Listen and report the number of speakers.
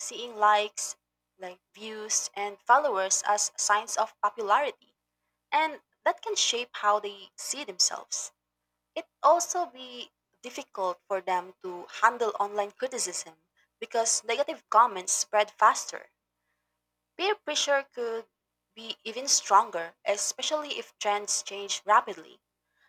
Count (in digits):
1